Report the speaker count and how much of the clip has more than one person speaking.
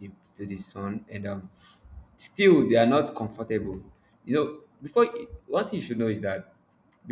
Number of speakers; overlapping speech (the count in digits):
1, no overlap